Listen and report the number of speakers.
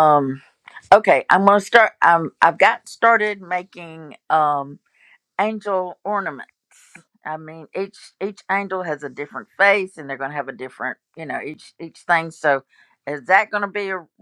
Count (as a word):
one